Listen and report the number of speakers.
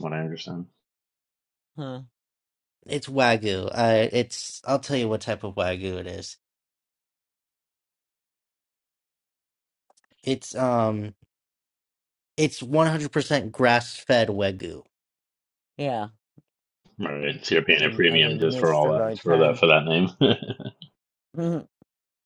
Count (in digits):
3